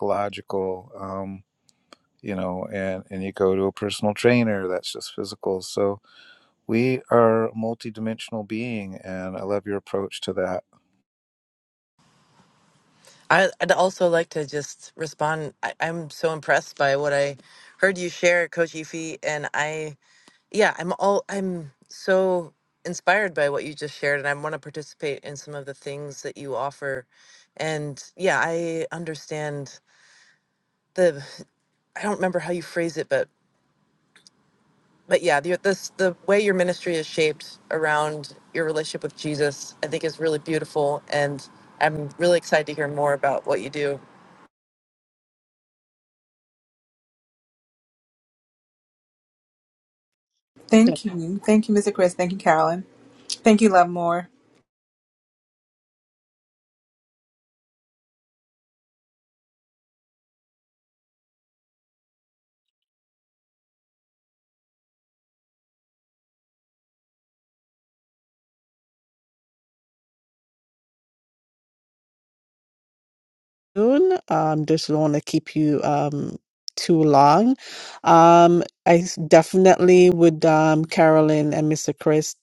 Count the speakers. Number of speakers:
4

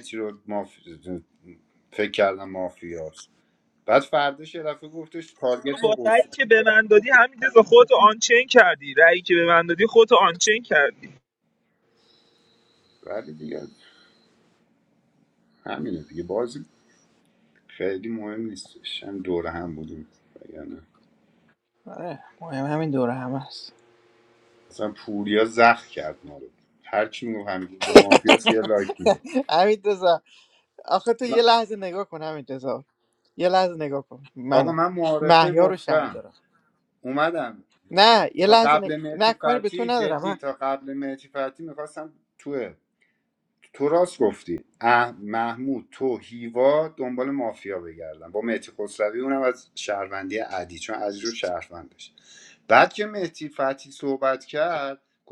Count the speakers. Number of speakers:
3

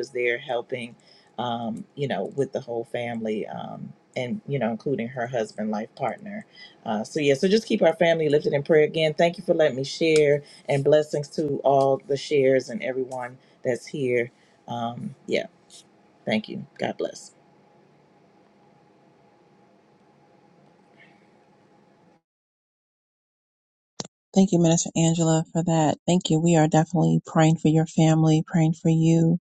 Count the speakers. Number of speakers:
2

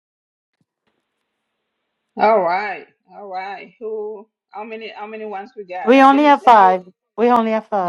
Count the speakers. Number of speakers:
2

